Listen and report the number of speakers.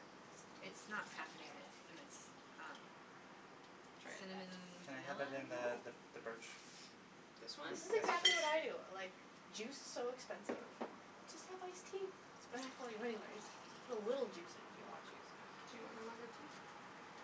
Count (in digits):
4